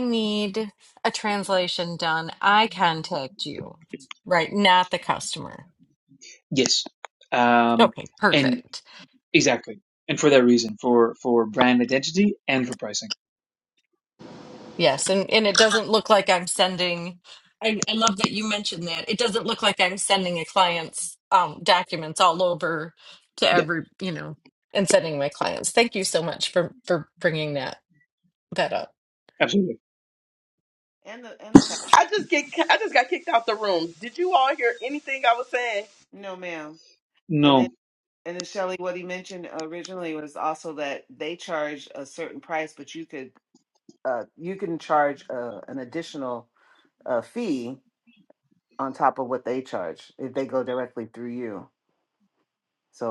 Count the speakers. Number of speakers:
four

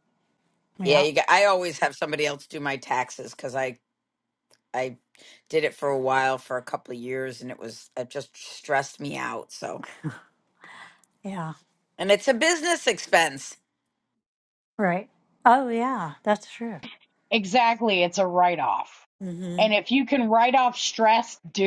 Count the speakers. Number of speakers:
three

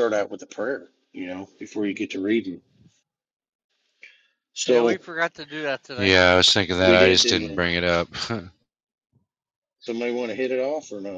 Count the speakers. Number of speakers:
three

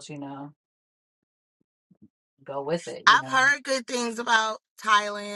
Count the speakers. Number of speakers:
two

